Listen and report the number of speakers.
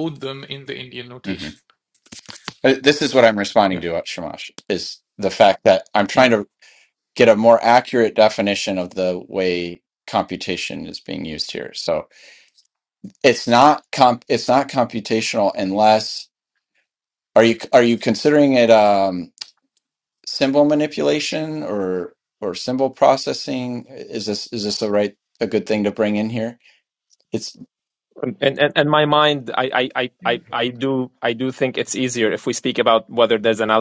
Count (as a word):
three